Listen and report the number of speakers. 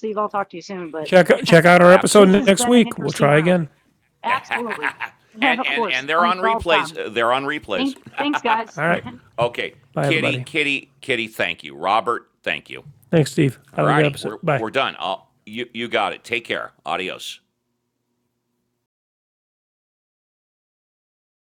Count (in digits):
3